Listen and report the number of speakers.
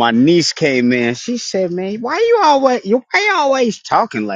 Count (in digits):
1